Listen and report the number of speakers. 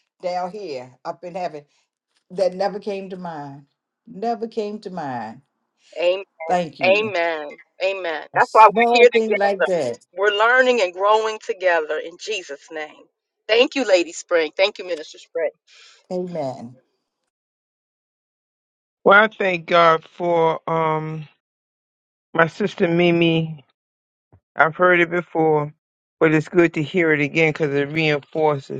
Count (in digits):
3